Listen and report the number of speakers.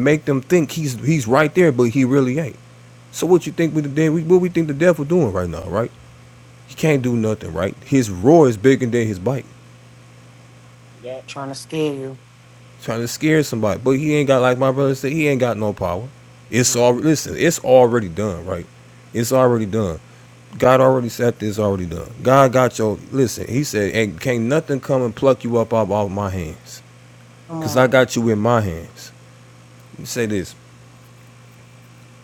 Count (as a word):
two